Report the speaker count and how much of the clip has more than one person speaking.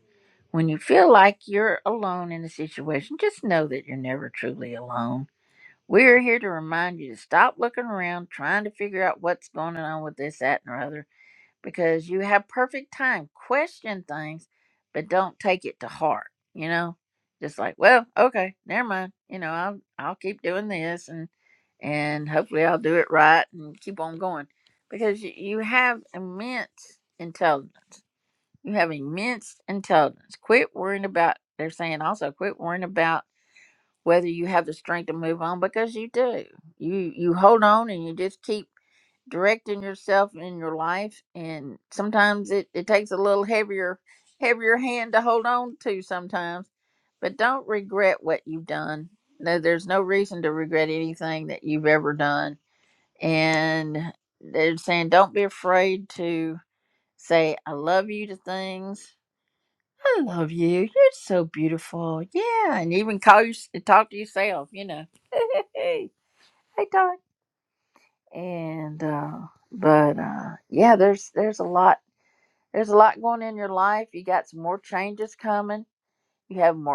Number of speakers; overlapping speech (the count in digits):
1, no overlap